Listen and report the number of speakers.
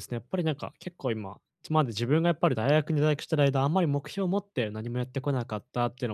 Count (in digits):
1